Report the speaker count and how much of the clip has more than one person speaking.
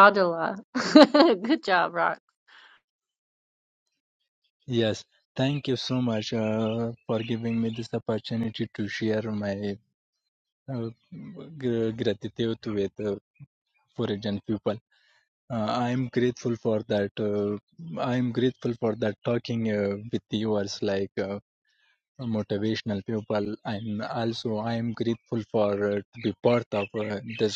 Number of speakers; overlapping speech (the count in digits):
2, no overlap